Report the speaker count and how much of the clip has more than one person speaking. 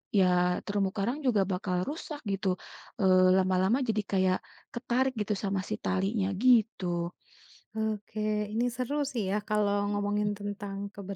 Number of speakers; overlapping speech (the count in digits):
2, about 4%